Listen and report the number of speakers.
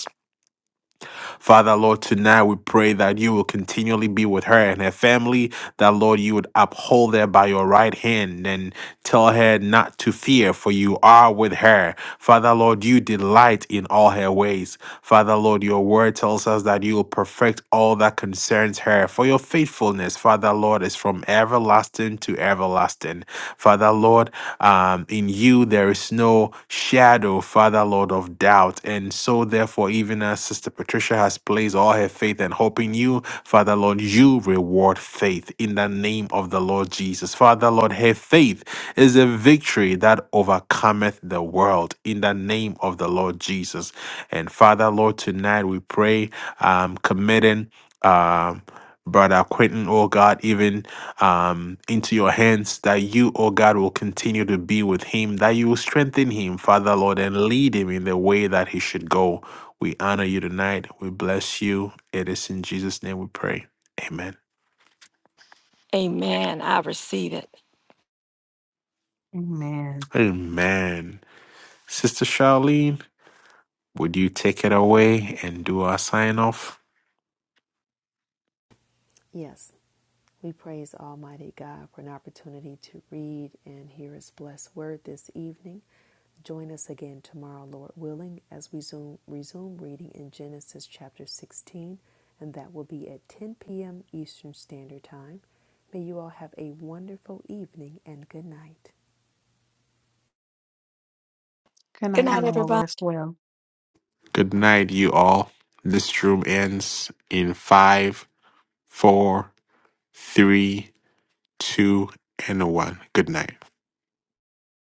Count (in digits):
4